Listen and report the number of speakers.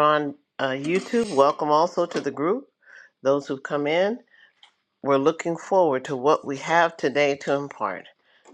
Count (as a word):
one